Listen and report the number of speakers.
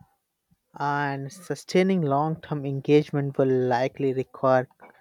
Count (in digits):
1